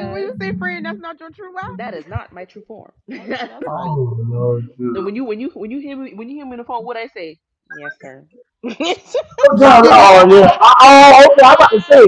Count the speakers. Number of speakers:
three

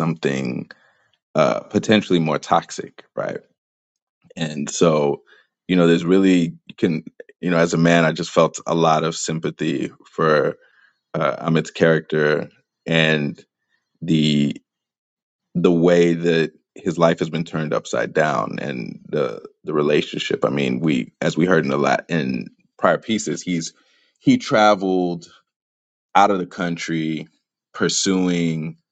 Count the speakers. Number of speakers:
one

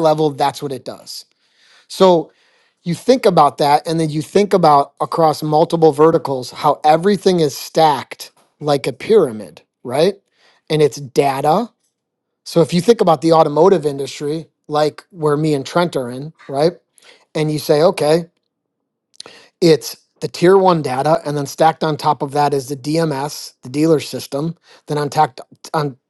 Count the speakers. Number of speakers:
one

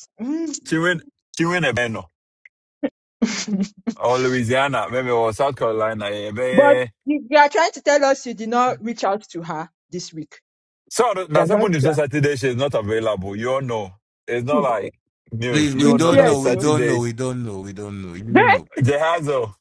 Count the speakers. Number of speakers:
three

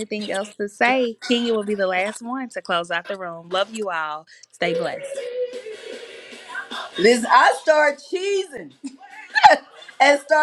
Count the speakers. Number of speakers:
two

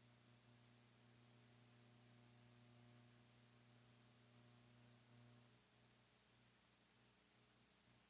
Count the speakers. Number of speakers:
zero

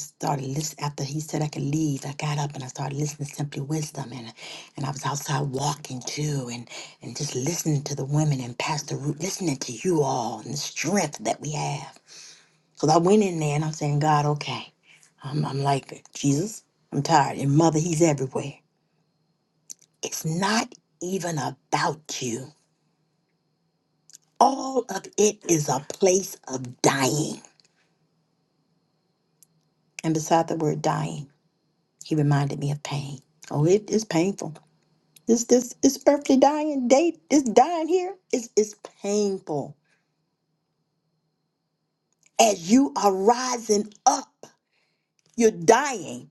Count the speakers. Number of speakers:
one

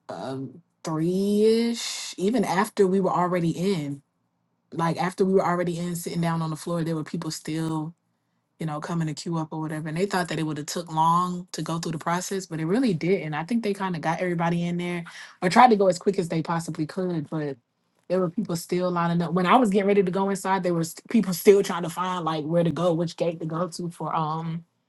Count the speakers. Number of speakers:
one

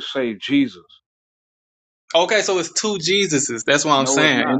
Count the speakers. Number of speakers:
two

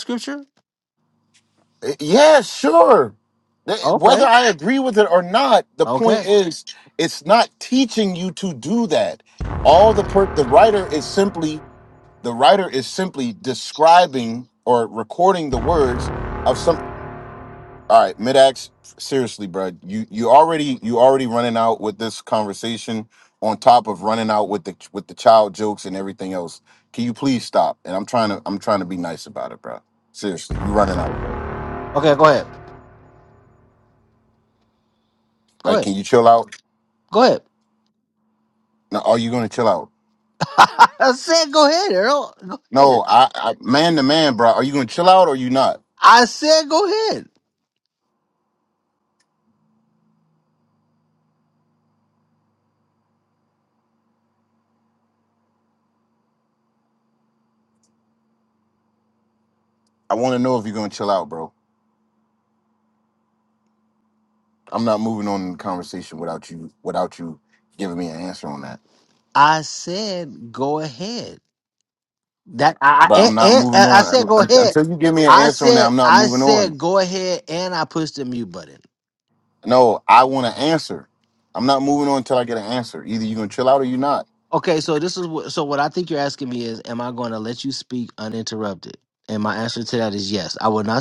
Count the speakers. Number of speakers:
two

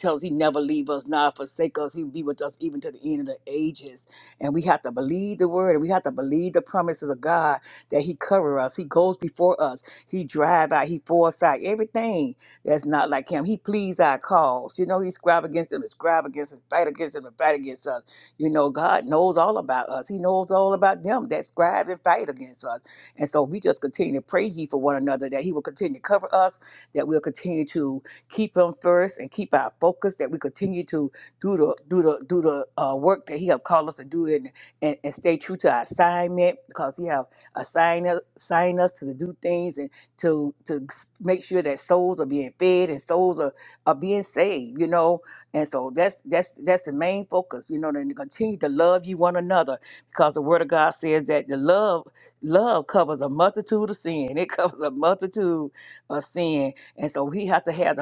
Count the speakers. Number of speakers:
one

